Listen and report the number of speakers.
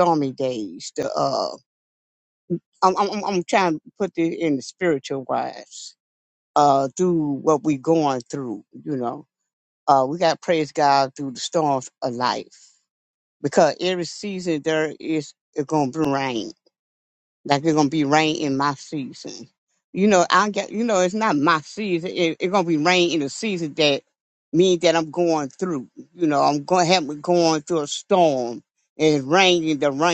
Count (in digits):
1